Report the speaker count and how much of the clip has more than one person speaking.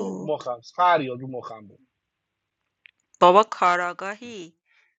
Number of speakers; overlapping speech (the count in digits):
2, about 9%